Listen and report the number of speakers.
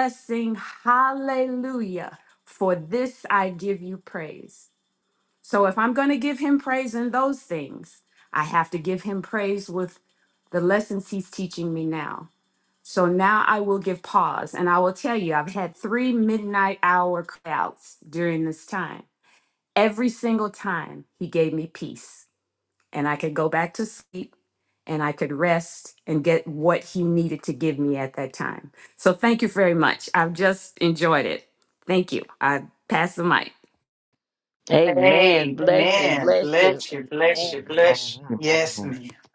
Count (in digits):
3